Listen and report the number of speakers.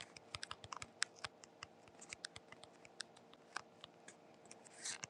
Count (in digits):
0